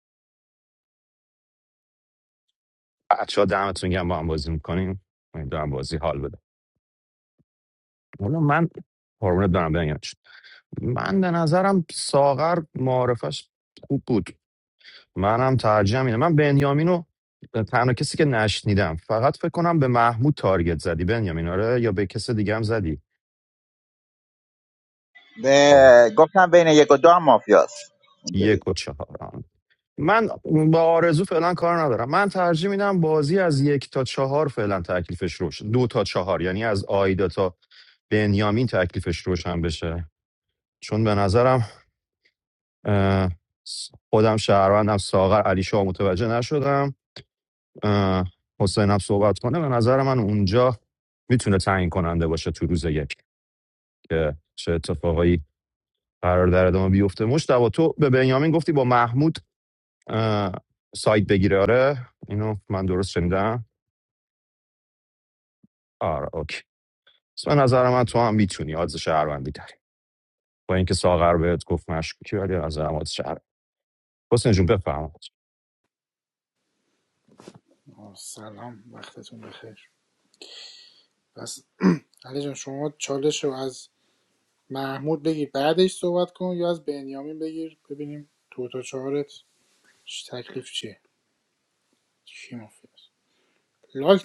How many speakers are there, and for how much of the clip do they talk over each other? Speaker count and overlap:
3, under 1%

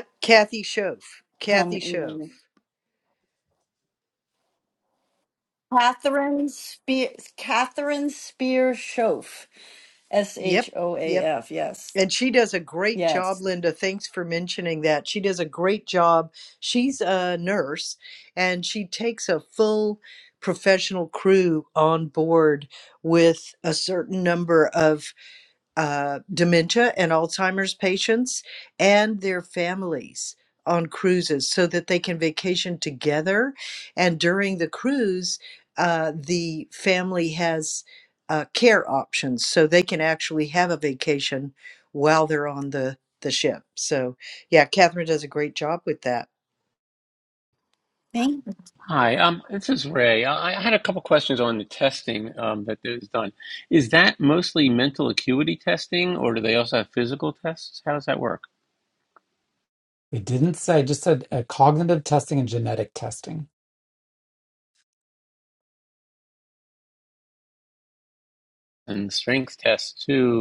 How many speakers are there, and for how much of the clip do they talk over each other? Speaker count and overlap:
4, about 2%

